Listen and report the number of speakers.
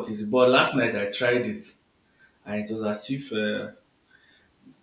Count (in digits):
1